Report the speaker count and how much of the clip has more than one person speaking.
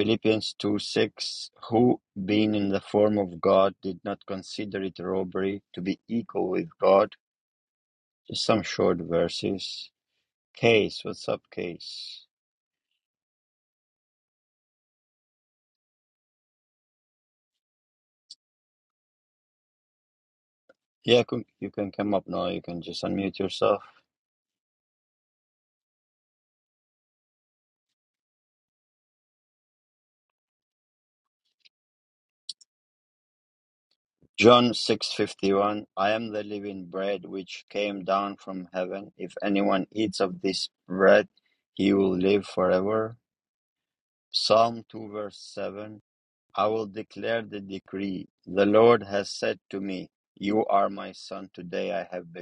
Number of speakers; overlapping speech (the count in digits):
1, no overlap